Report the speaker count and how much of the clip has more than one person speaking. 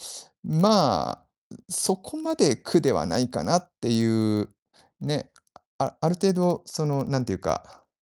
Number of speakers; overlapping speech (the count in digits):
1, no overlap